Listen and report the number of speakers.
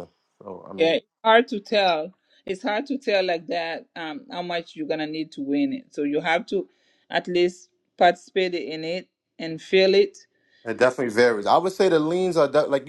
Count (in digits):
2